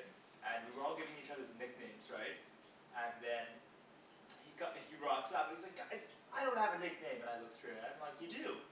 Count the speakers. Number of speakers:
one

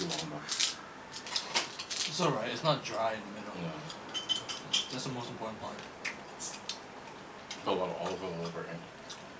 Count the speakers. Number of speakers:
two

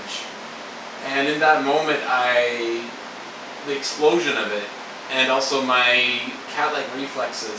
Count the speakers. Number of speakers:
one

